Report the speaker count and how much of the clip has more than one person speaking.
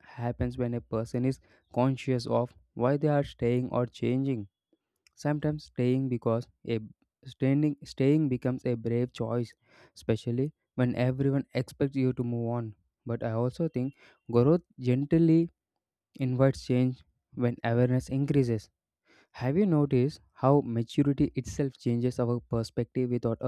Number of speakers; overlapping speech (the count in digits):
1, no overlap